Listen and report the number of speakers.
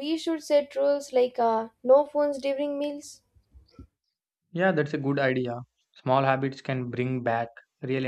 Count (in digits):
2